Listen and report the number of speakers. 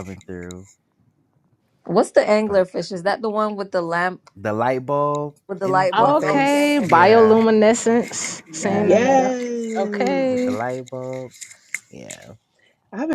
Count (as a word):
four